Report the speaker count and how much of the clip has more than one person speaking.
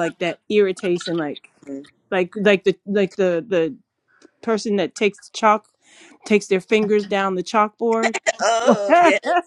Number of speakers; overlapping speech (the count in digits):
2, no overlap